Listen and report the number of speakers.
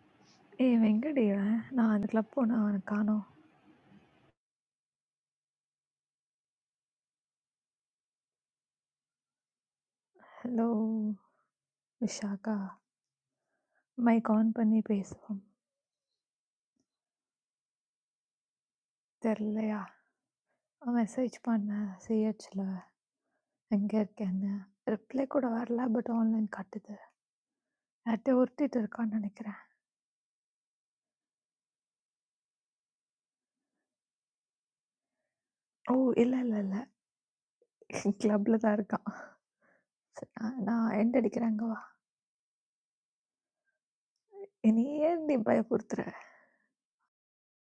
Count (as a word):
one